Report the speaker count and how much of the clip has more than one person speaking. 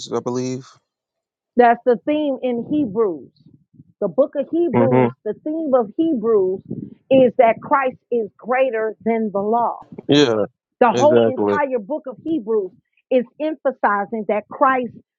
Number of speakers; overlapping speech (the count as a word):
two, about 7%